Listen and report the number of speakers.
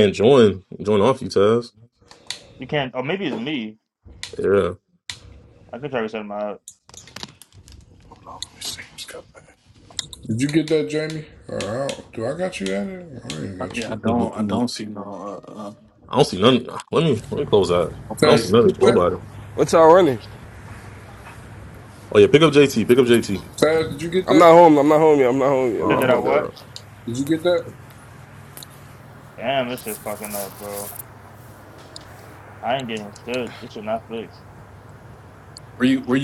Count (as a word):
five